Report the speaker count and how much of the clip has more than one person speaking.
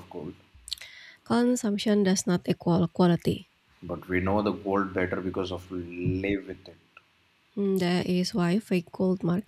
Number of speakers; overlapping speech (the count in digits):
2, no overlap